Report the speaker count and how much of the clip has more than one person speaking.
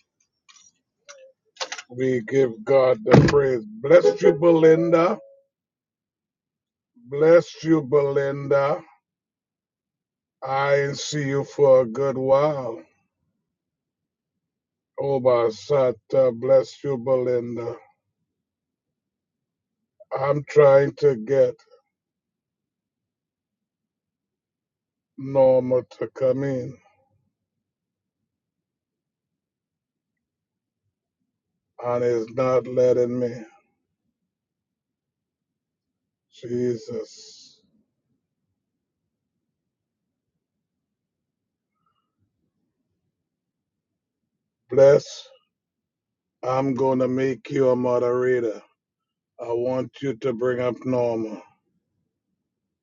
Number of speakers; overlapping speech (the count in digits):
1, no overlap